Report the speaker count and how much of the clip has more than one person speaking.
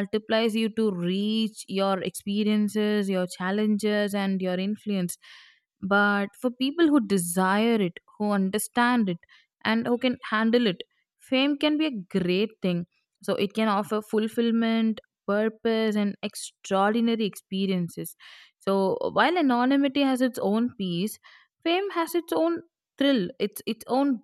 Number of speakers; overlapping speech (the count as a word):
one, no overlap